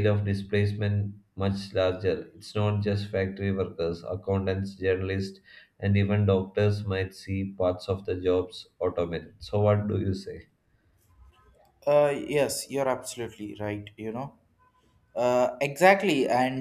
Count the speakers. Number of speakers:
two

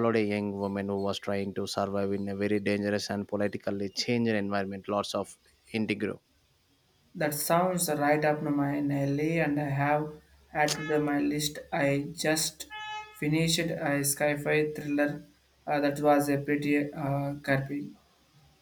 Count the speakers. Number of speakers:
two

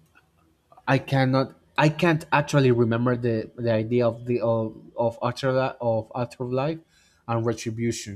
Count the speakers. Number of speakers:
one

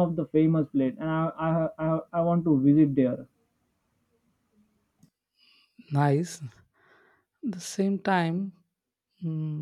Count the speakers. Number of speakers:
two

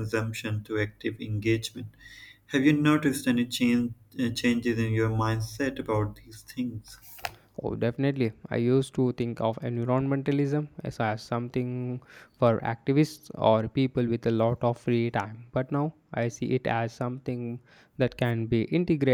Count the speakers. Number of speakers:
two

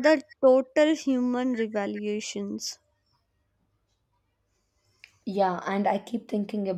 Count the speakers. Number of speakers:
two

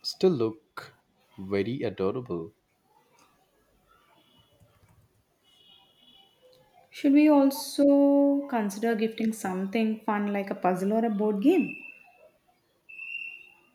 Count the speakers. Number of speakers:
two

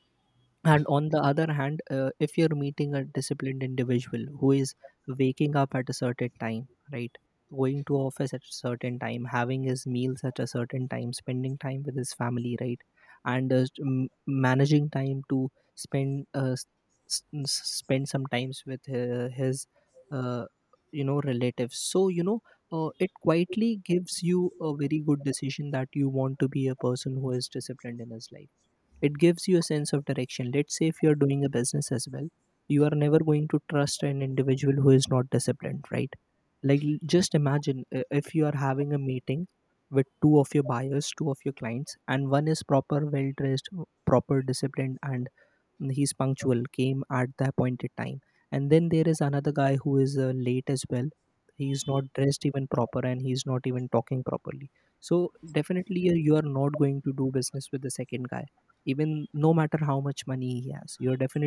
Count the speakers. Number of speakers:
one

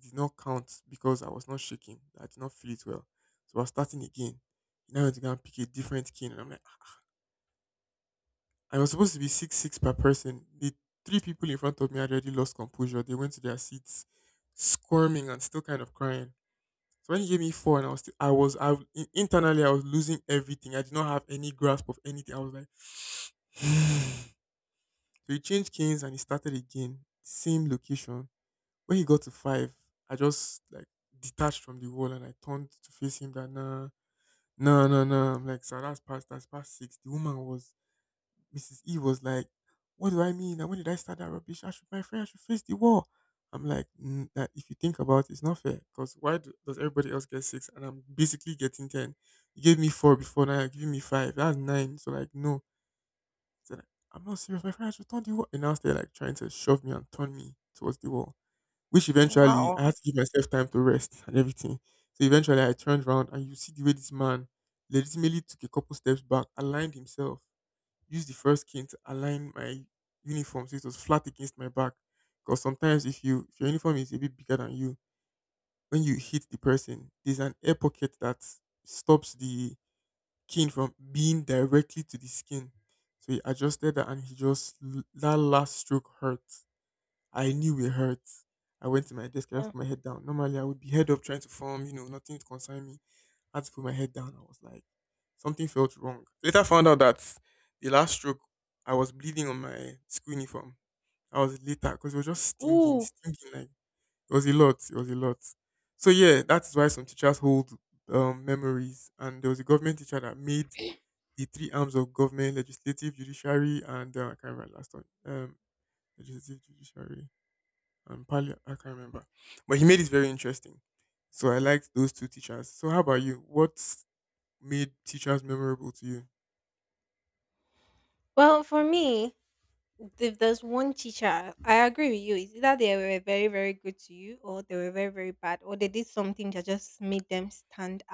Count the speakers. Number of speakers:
two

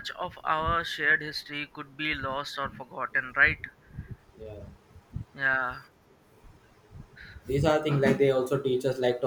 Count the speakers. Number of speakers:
two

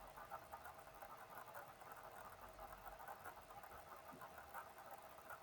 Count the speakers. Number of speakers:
zero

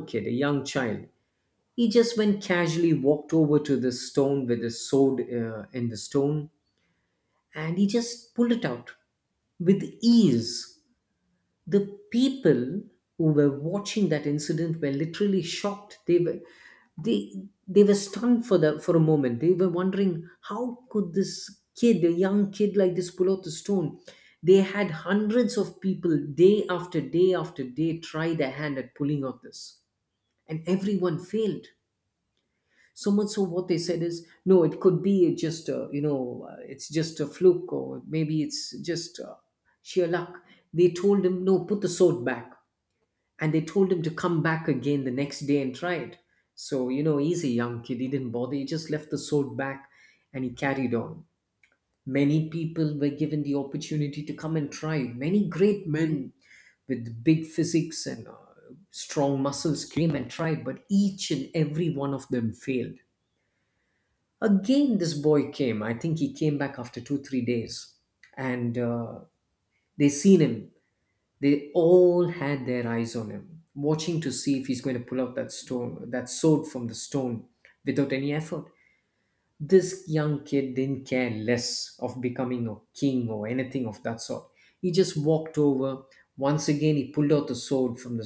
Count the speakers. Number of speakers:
one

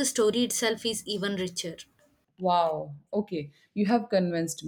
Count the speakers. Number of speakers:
two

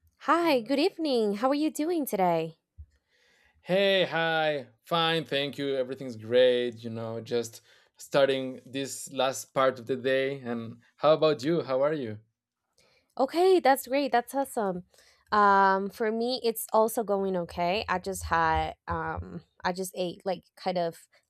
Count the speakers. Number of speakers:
two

